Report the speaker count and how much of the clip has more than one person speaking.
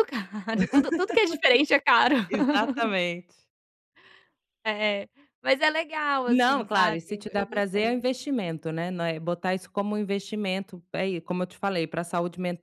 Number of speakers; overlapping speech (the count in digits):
2, about 13%